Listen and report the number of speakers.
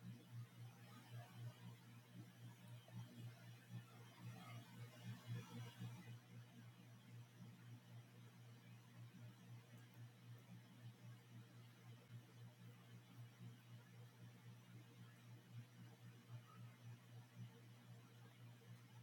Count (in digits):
0